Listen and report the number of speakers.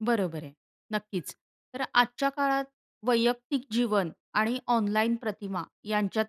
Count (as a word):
one